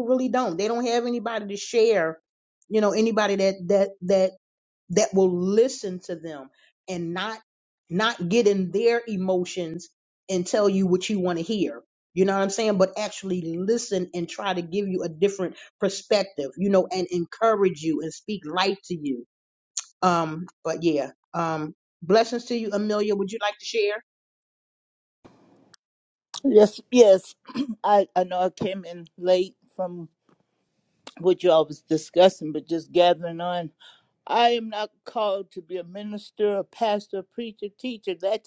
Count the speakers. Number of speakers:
2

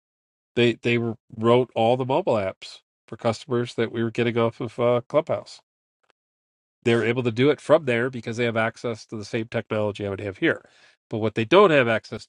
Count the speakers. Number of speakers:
1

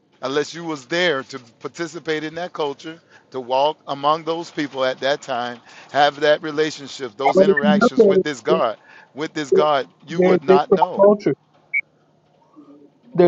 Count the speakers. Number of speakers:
2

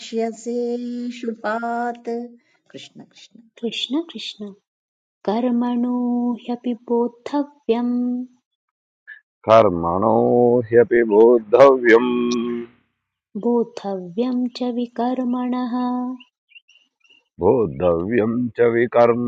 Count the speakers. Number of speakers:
3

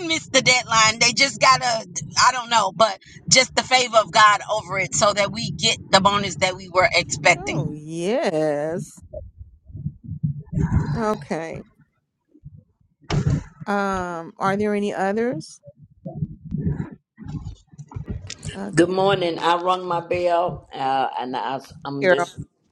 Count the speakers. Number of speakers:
3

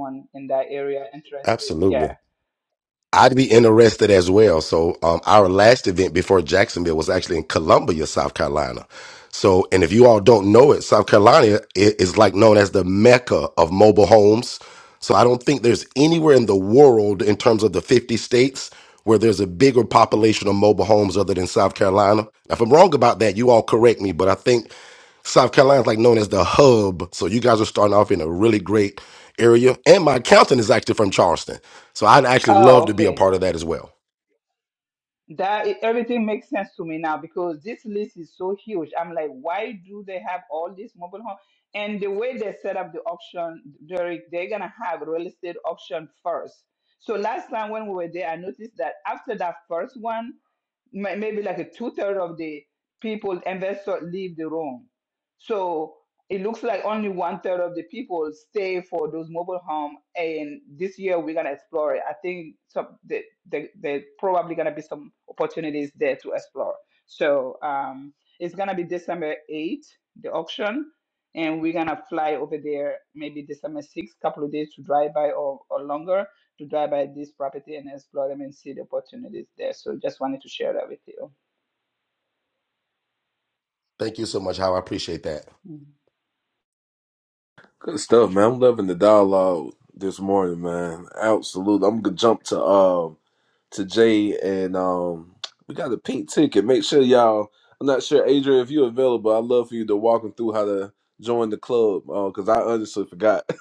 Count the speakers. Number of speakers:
3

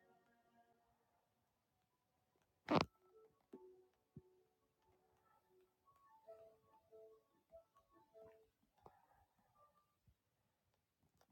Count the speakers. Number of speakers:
0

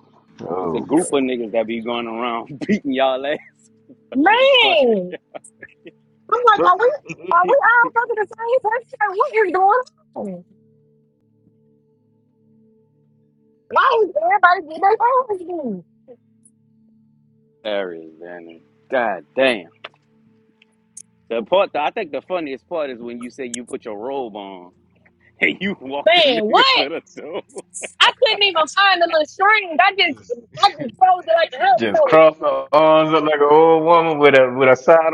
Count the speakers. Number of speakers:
3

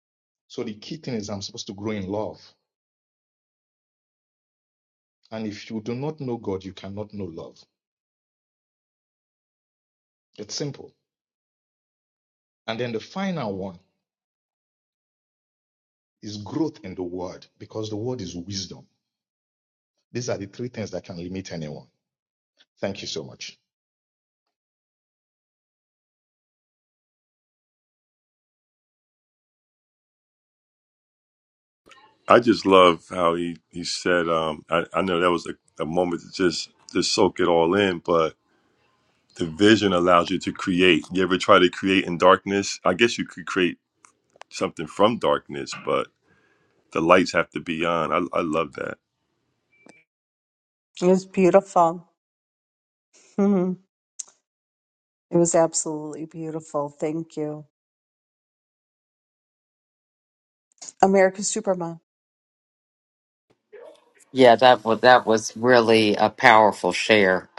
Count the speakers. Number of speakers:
4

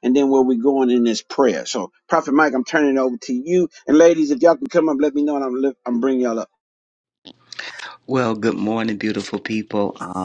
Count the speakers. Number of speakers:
2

